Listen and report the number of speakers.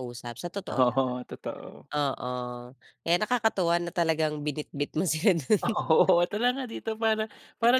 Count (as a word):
two